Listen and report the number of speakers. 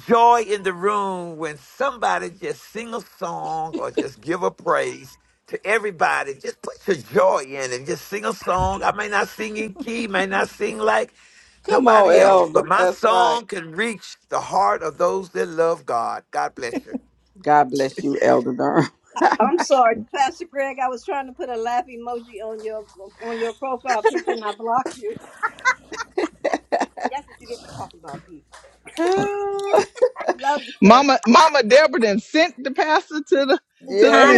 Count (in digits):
4